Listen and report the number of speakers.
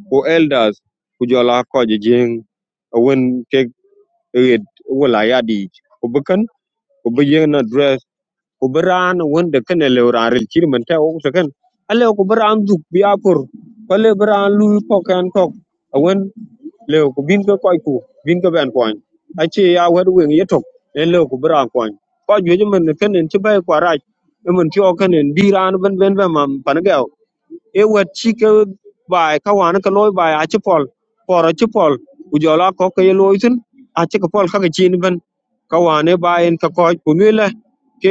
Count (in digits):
1